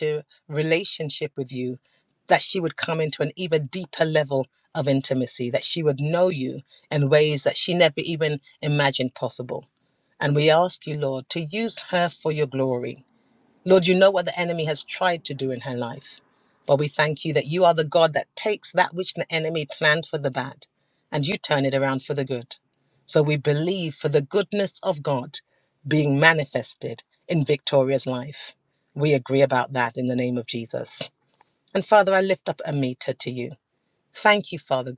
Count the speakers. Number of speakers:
1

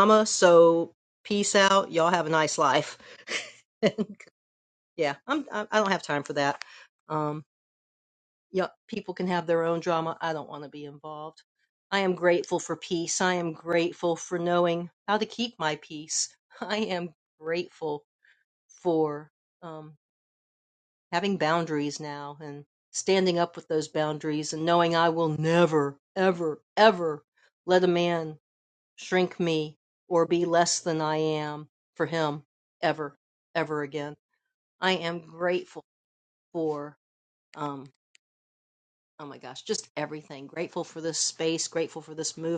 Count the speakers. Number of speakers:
1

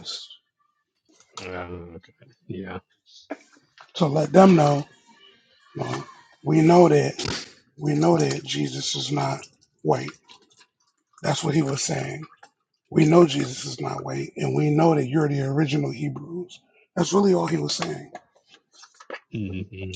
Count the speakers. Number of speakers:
2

